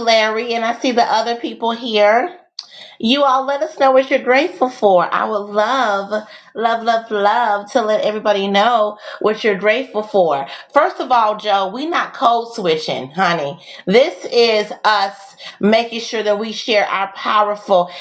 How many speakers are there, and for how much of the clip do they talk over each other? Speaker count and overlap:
1, no overlap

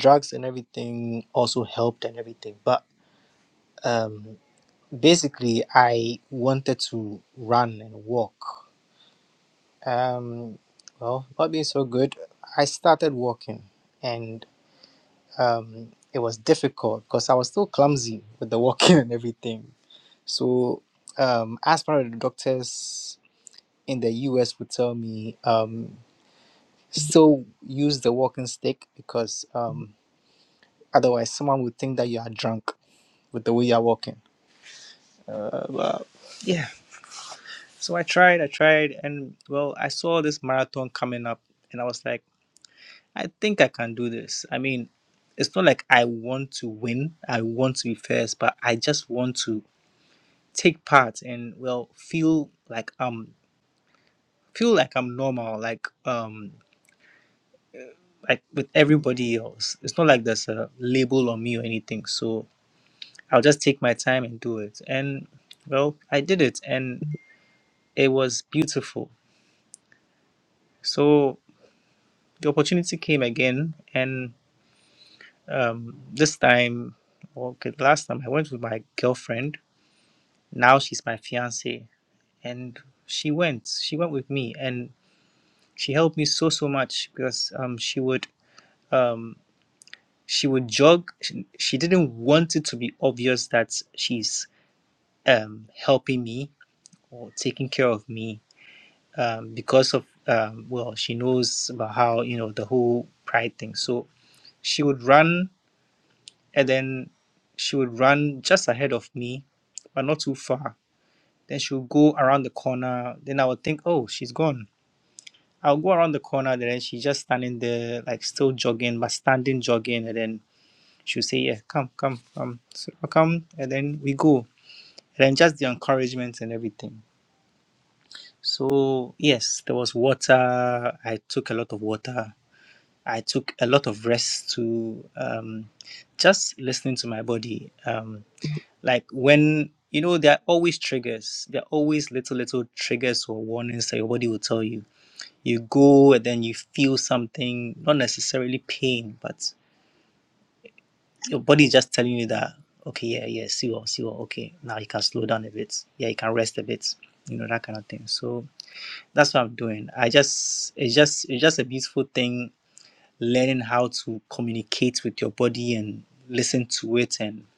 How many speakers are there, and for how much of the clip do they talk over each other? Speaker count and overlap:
1, no overlap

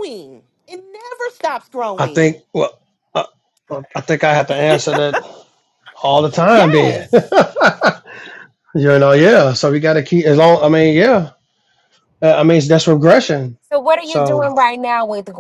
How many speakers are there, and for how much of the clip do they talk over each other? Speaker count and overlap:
3, about 8%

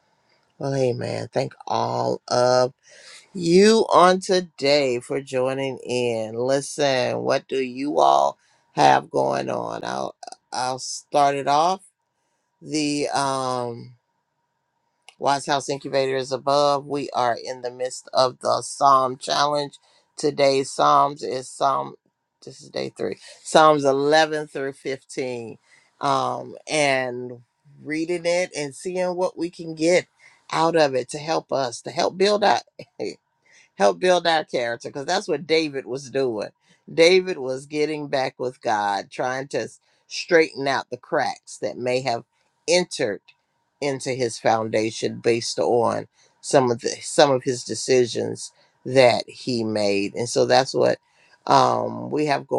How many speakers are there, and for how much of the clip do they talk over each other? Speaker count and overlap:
1, no overlap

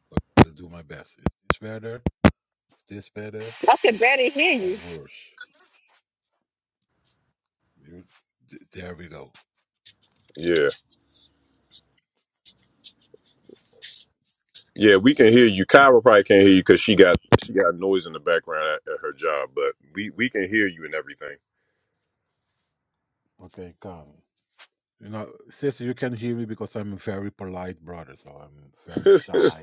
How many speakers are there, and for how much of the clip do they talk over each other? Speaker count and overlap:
3, about 4%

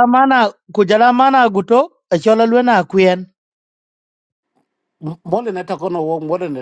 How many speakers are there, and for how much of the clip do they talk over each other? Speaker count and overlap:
2, no overlap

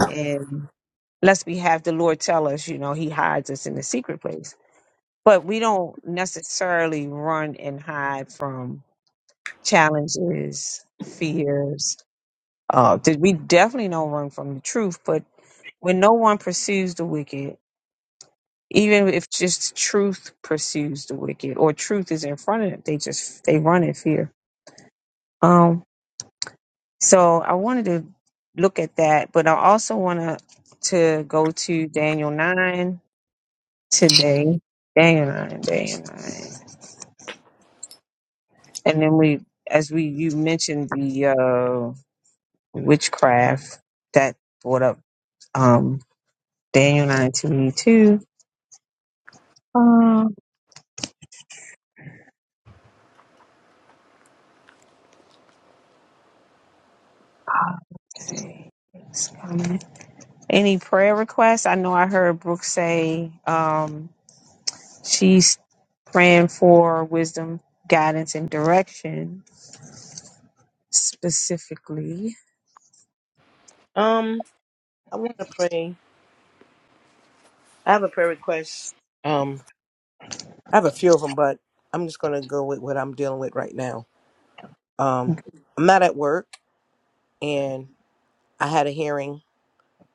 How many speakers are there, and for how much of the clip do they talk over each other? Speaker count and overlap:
2, no overlap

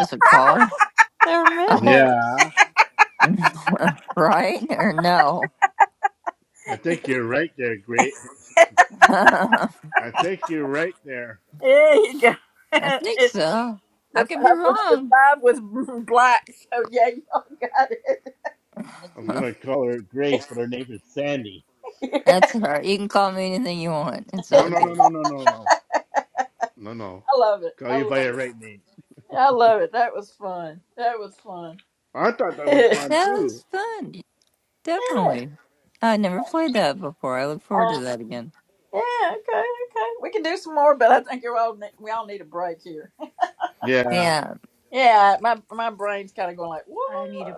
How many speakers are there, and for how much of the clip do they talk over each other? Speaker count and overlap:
4, about 9%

